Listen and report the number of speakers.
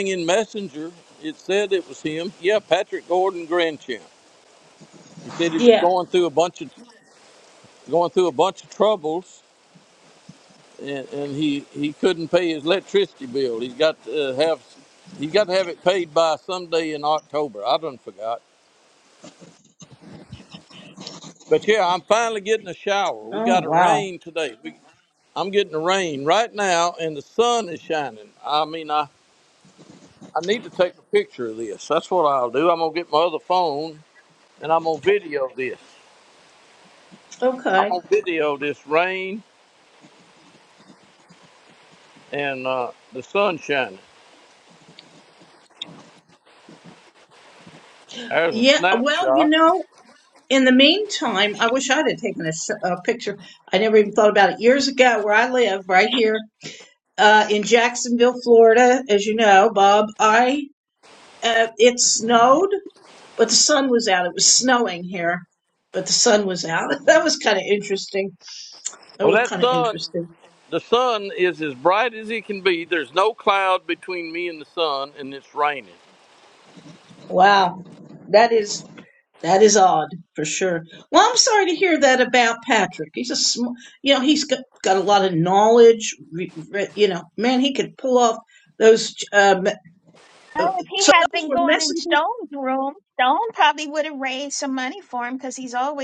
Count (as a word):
three